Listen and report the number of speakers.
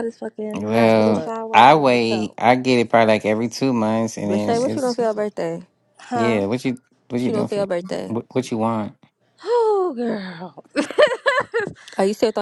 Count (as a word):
three